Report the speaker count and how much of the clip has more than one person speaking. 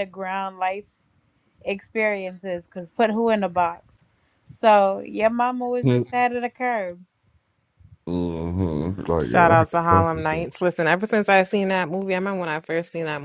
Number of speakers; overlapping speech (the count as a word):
three, about 10%